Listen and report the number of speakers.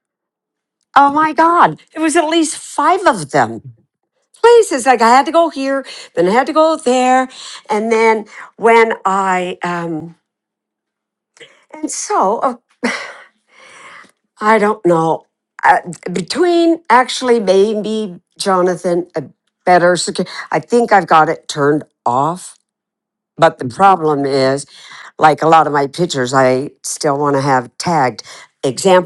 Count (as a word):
one